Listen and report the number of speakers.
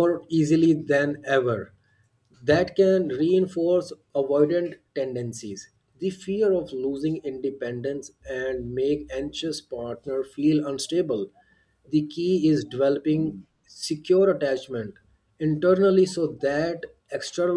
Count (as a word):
one